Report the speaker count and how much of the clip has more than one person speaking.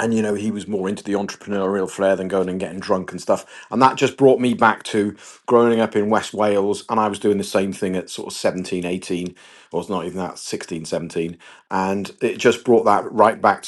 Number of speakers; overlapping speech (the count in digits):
1, no overlap